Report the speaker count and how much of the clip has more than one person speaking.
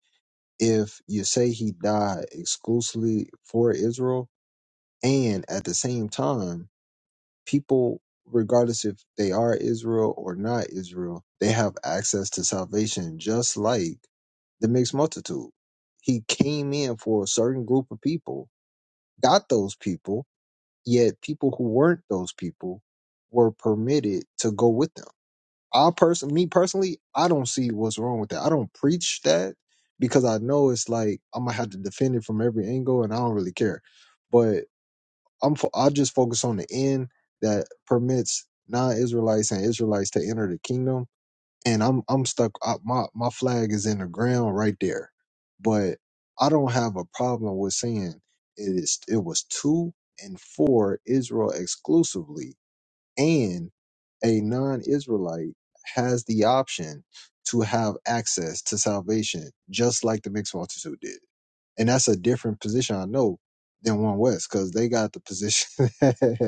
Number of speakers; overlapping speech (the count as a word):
one, no overlap